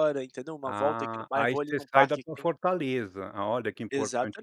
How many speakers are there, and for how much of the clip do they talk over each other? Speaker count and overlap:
2, about 52%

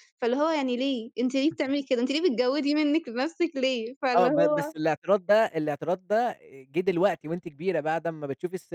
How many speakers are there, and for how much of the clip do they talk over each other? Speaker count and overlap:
2, about 7%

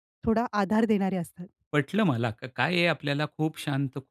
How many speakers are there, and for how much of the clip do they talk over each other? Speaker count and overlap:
2, no overlap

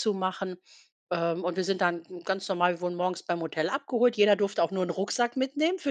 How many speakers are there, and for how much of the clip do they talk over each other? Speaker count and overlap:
1, no overlap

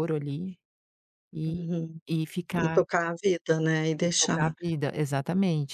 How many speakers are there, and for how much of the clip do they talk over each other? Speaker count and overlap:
2, about 18%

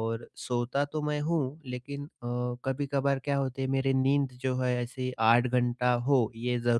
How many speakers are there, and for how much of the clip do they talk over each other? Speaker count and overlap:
1, no overlap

